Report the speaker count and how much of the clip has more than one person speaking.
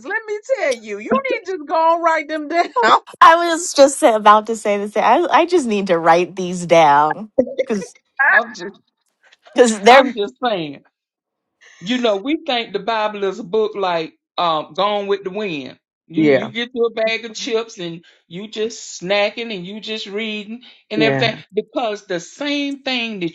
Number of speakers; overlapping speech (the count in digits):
3, about 4%